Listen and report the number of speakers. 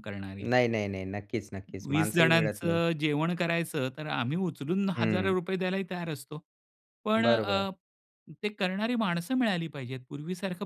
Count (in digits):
2